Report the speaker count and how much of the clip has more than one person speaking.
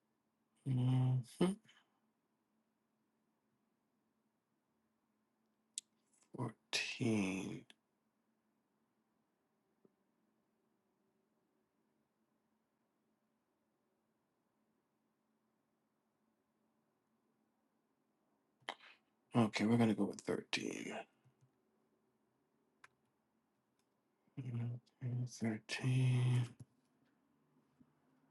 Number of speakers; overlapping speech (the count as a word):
one, no overlap